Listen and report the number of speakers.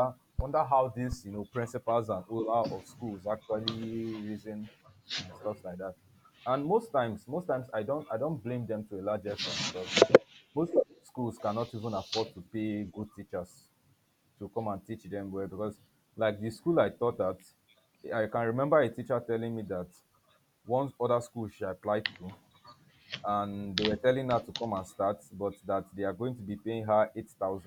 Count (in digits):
1